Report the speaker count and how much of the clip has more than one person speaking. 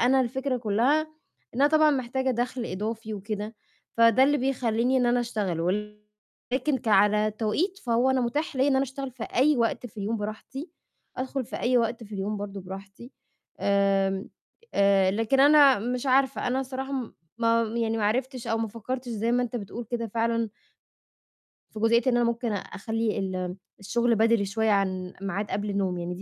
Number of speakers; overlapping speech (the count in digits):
1, no overlap